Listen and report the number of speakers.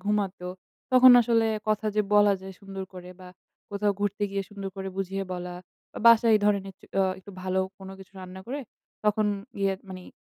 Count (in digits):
1